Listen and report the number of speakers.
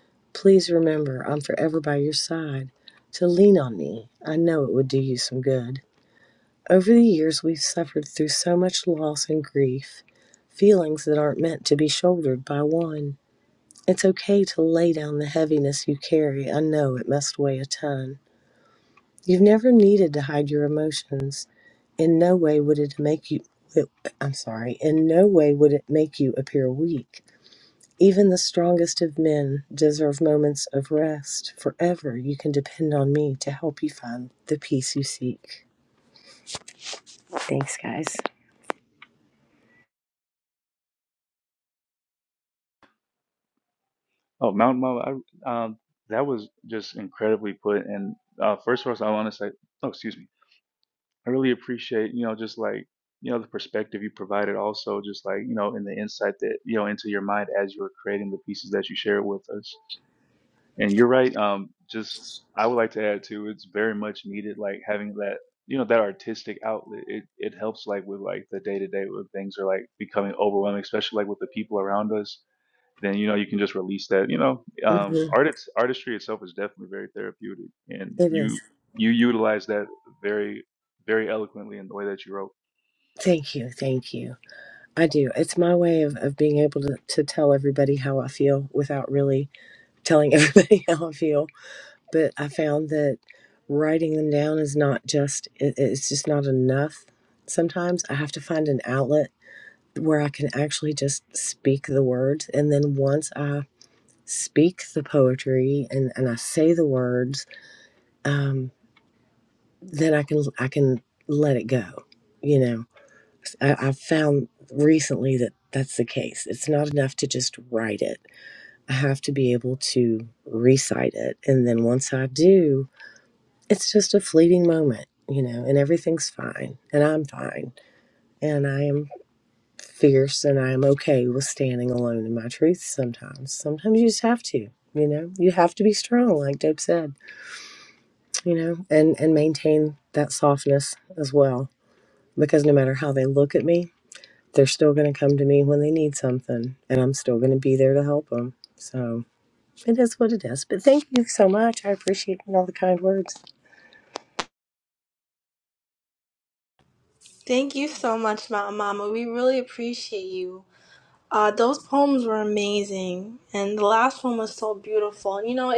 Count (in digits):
3